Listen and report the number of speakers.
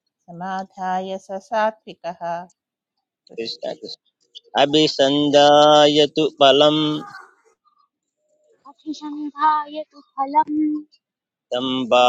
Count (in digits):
3